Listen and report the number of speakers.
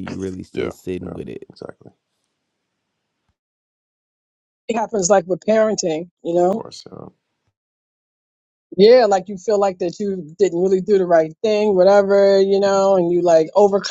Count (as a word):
three